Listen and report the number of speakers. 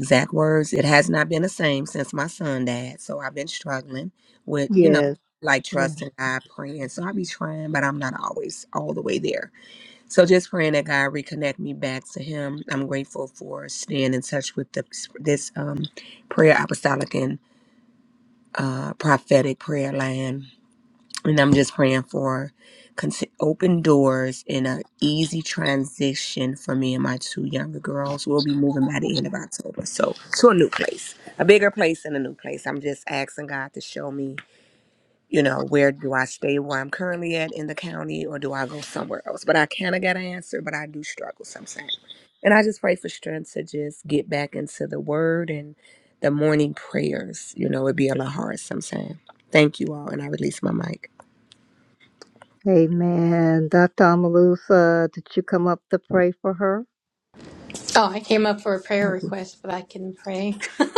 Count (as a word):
three